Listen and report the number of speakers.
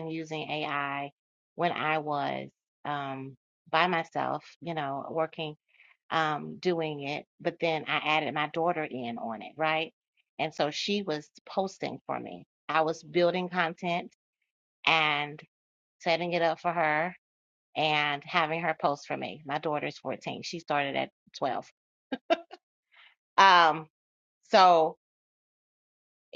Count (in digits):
1